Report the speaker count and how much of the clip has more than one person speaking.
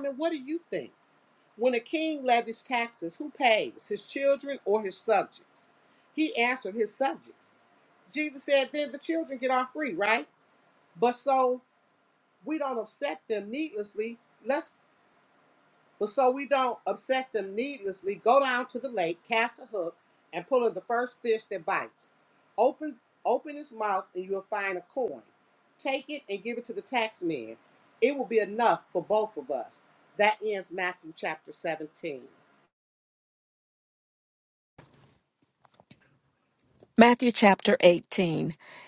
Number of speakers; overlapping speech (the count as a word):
two, no overlap